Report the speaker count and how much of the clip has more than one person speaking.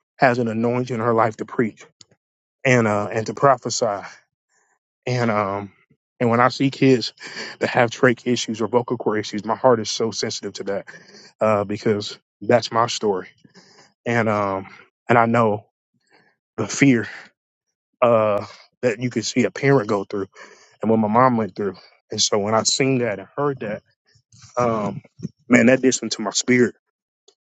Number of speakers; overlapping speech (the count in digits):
1, no overlap